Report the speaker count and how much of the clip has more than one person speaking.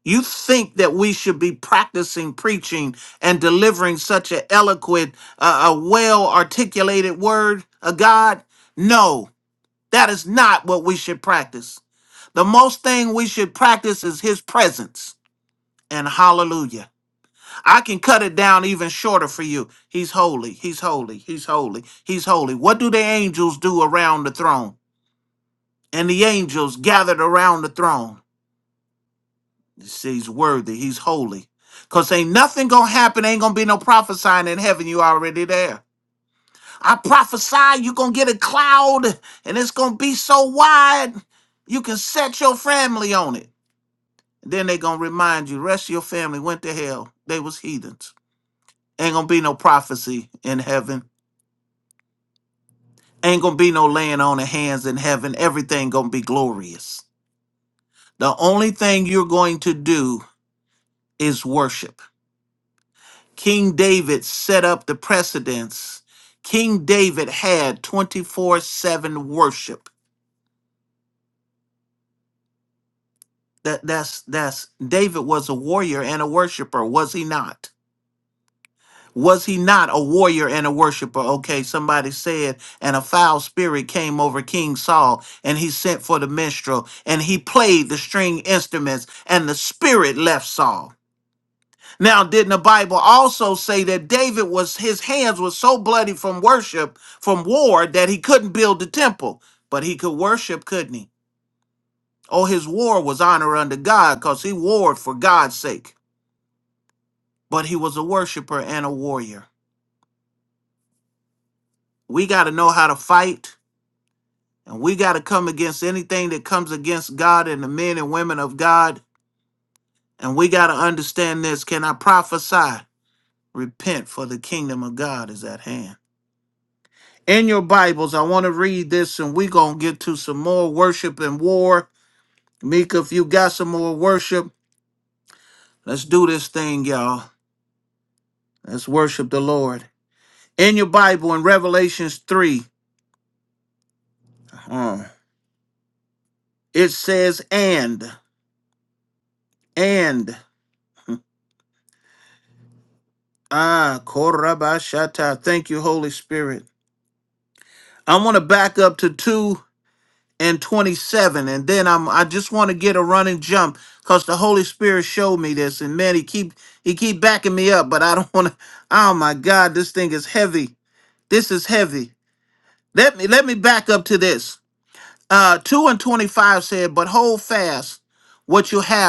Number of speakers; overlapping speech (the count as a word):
one, no overlap